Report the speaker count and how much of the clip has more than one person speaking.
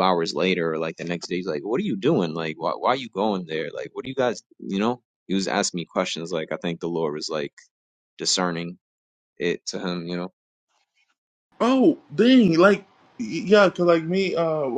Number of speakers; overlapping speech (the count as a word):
two, no overlap